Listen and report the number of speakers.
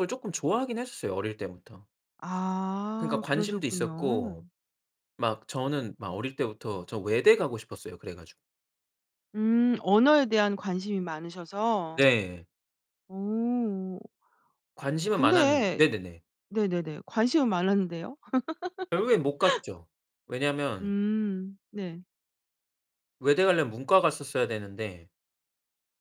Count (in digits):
2